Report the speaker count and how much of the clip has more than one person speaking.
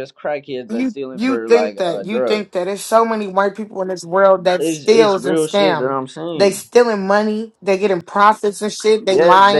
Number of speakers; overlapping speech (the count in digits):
2, about 39%